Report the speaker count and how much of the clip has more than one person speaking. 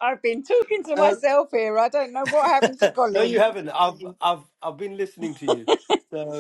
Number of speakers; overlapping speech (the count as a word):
two, about 9%